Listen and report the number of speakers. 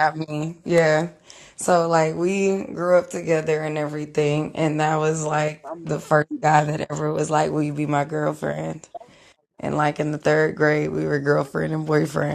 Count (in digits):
1